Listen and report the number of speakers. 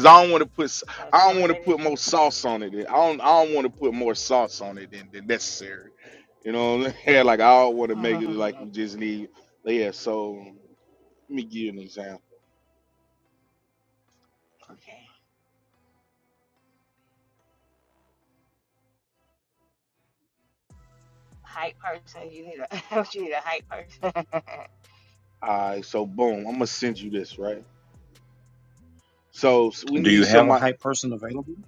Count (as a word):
three